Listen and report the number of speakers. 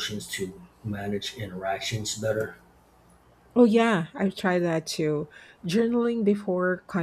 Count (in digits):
2